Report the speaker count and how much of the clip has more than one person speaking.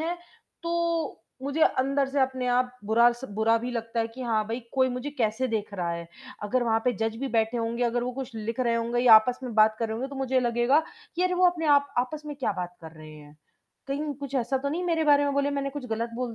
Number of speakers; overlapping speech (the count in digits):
1, no overlap